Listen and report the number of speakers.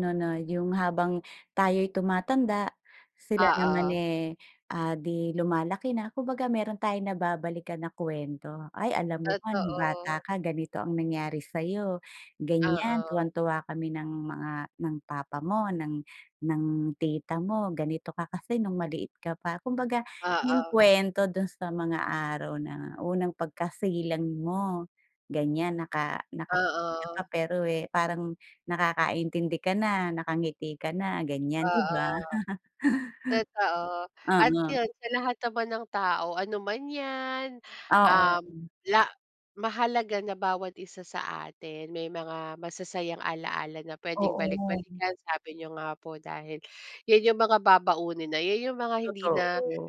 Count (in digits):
2